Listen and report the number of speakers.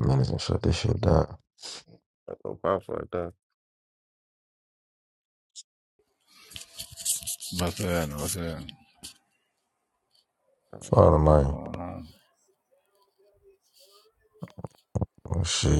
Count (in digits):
3